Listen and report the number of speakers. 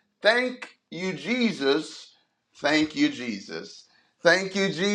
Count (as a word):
one